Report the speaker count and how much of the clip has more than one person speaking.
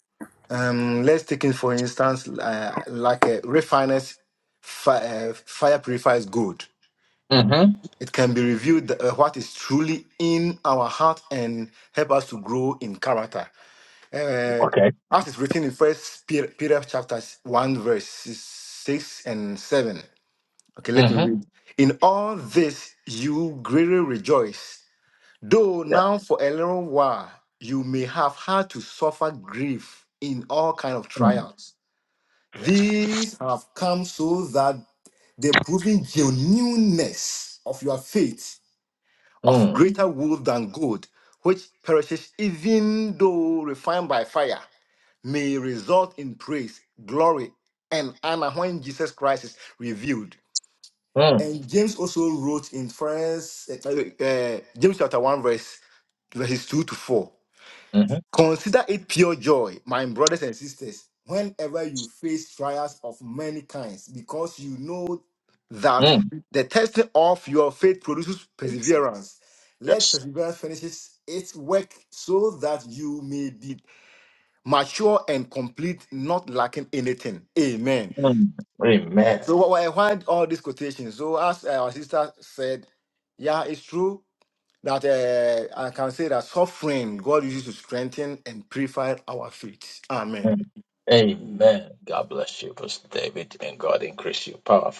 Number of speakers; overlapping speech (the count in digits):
2, about 2%